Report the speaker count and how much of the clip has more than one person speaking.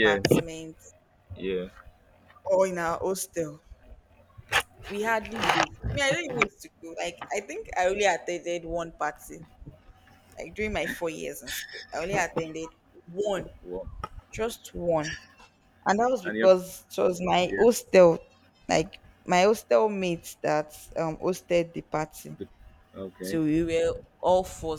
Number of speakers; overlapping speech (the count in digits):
2, about 3%